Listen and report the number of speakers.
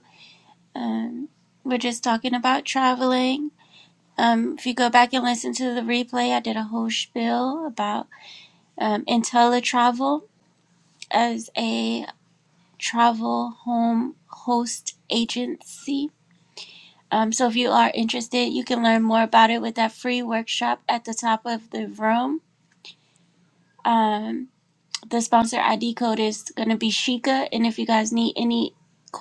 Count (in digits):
1